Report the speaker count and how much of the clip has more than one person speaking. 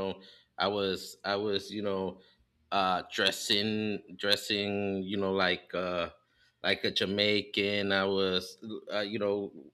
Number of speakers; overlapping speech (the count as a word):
one, no overlap